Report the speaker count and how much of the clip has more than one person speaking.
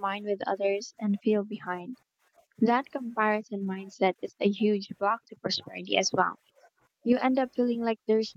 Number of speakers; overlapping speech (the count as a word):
one, no overlap